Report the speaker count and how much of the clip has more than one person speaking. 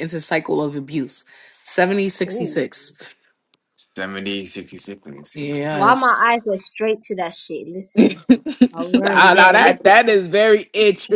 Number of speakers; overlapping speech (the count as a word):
three, about 16%